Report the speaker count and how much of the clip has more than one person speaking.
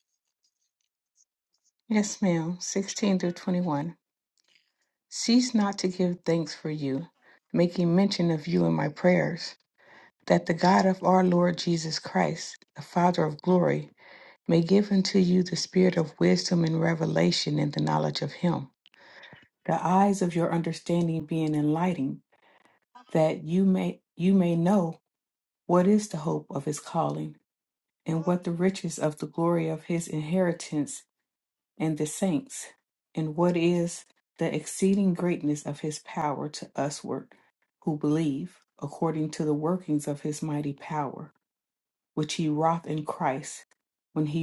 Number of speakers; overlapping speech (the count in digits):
1, no overlap